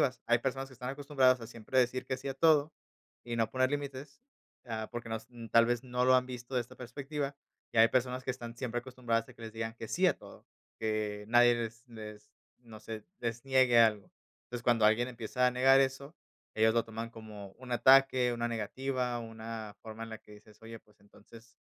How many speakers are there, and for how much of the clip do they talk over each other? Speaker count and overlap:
1, no overlap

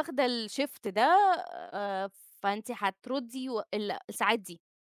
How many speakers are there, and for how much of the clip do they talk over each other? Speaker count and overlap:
1, no overlap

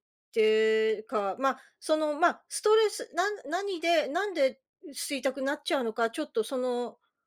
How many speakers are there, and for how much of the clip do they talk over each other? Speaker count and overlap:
1, no overlap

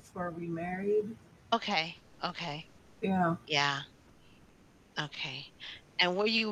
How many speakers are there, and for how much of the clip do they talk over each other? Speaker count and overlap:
2, no overlap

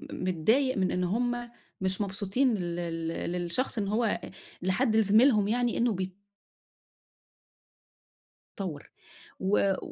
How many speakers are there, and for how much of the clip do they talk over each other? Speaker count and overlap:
1, no overlap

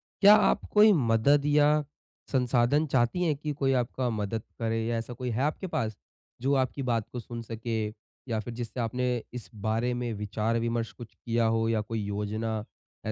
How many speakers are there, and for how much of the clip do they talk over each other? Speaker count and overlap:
1, no overlap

